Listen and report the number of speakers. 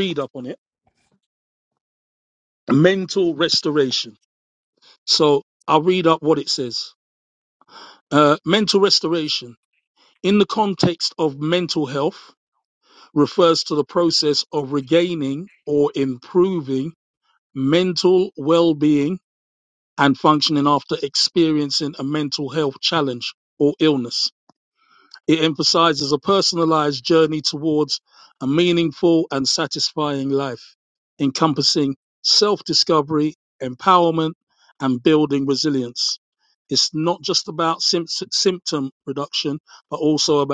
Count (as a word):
one